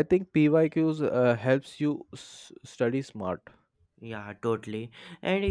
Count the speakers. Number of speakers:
2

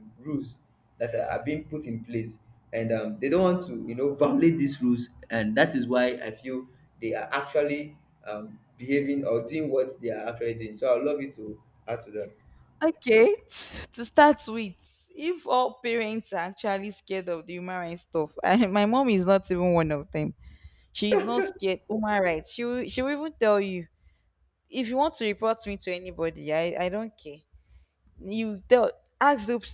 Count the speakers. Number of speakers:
2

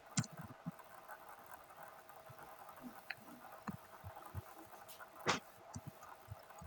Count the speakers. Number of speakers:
0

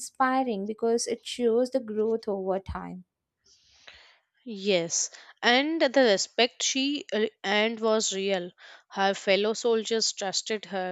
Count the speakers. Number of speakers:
2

